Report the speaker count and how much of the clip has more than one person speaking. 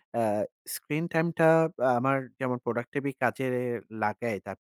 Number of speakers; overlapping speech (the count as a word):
one, no overlap